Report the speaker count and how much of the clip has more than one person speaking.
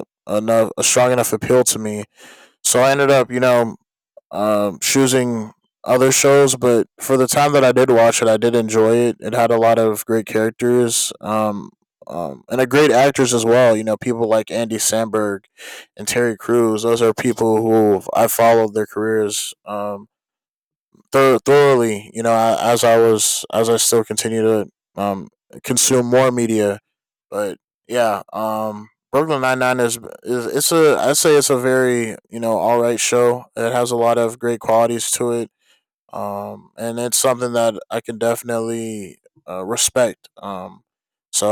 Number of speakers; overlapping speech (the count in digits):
1, no overlap